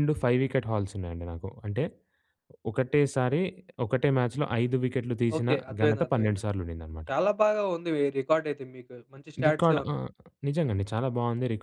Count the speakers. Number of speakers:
2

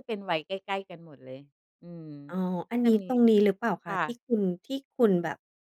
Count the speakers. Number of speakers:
2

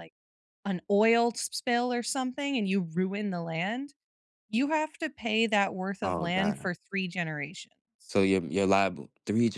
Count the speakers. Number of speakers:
2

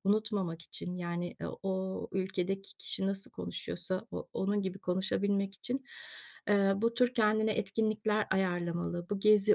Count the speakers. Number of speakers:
1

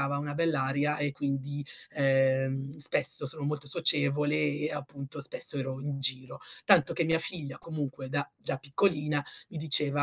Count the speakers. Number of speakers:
1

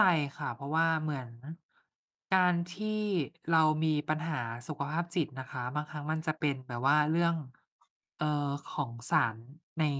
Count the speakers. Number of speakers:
1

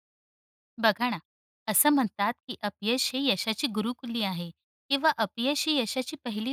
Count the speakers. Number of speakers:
1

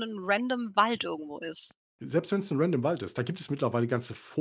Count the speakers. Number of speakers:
2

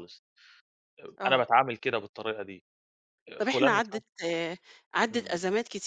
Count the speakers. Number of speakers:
2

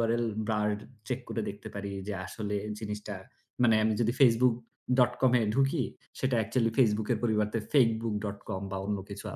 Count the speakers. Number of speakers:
1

